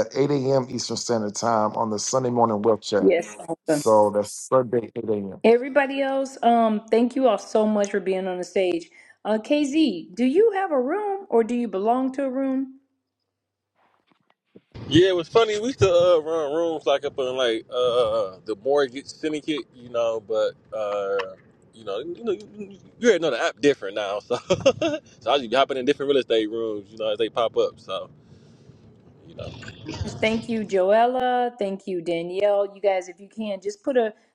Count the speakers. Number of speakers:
3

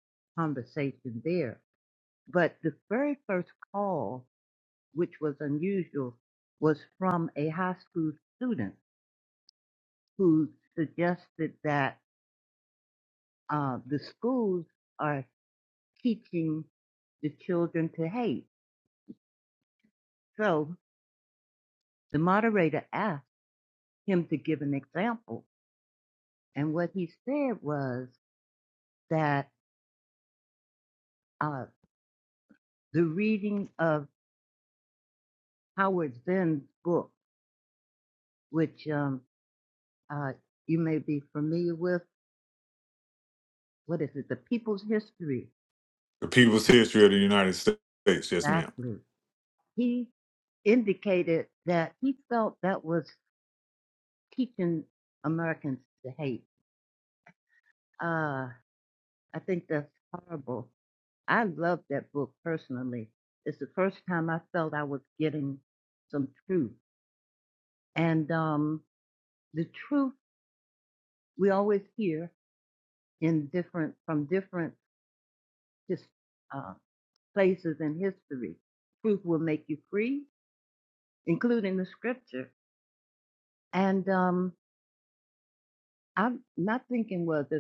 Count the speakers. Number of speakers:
2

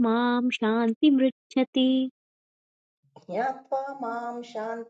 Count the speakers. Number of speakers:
2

